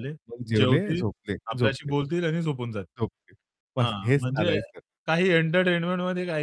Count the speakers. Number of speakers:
two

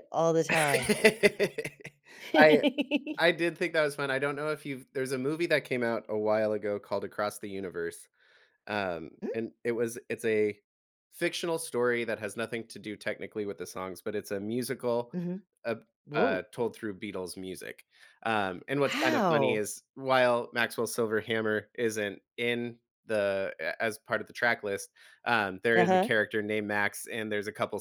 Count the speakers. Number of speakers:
two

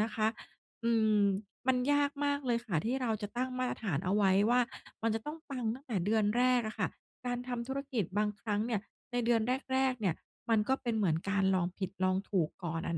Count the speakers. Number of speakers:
one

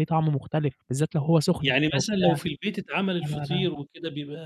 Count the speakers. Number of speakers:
two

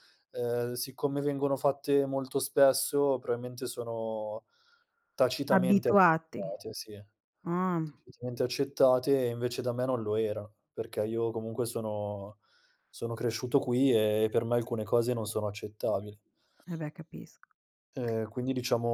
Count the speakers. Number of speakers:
two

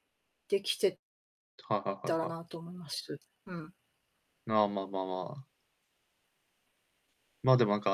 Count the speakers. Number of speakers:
two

